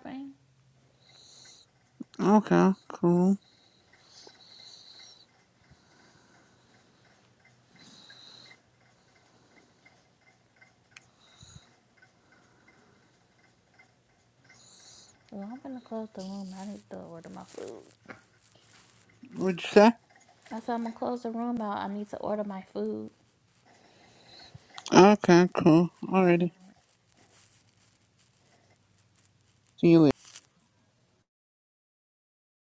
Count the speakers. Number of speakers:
2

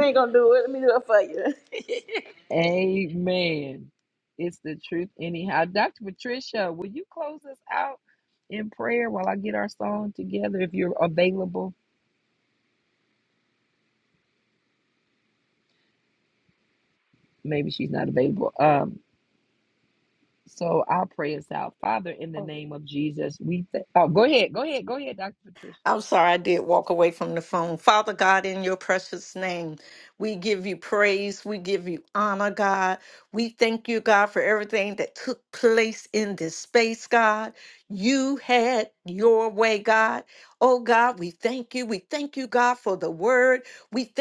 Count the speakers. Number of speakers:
3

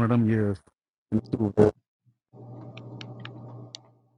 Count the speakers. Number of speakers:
1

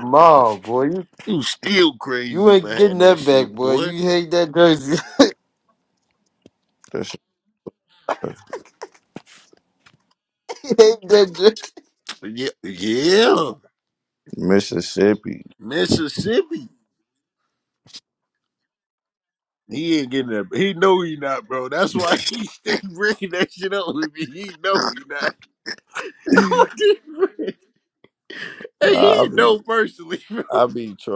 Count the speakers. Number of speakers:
3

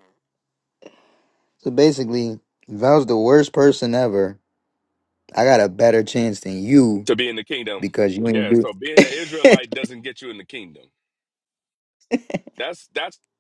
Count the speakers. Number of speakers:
2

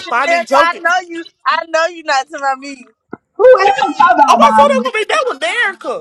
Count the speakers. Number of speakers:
3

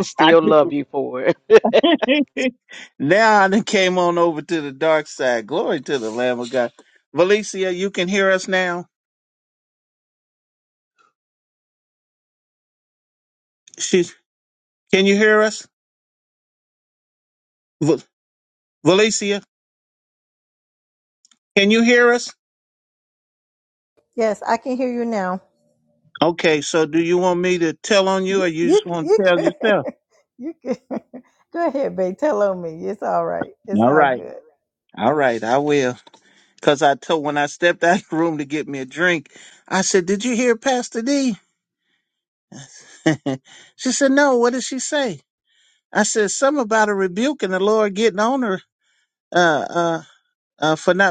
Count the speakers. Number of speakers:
3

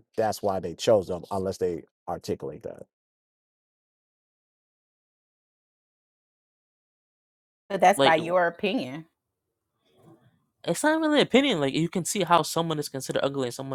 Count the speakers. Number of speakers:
3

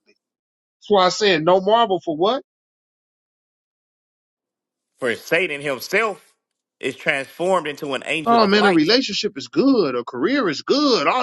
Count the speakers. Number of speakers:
2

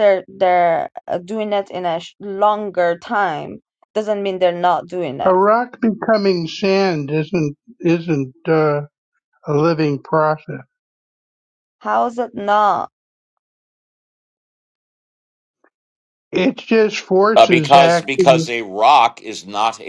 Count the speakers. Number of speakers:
3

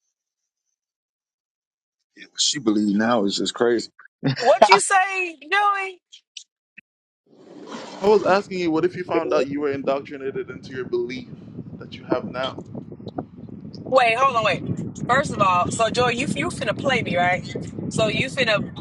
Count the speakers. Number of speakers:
3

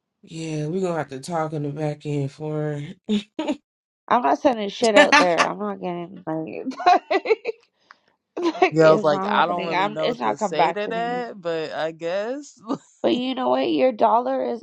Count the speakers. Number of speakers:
3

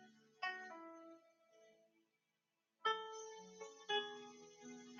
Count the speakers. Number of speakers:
0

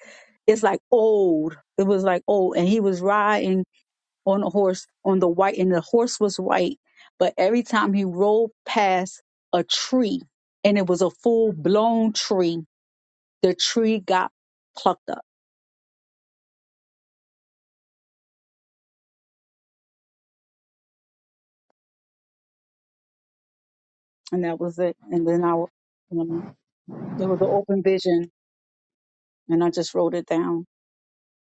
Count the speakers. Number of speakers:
1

